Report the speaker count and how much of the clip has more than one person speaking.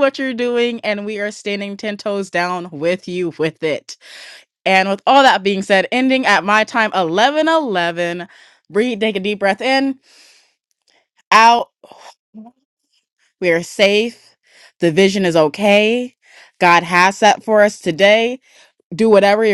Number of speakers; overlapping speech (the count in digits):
1, no overlap